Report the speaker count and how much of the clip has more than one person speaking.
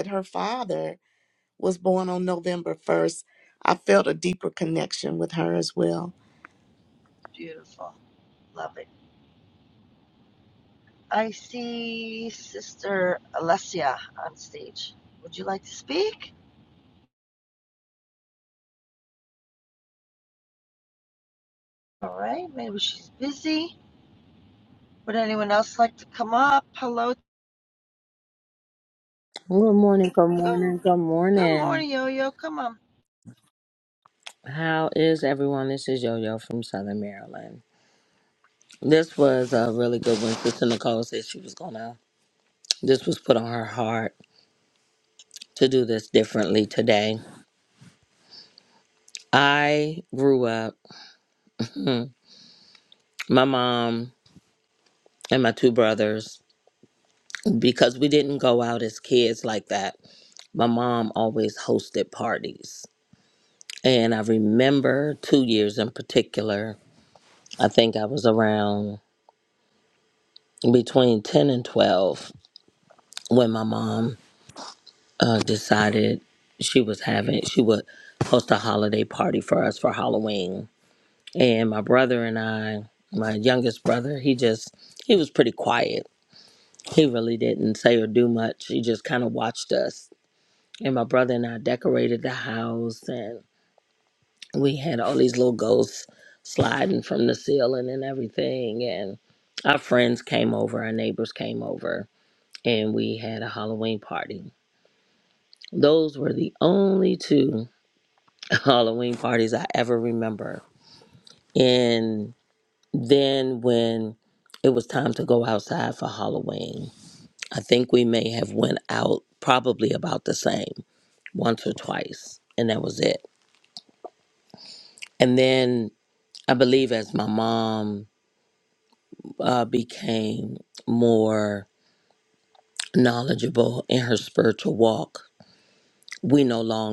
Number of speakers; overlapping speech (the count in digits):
3, under 1%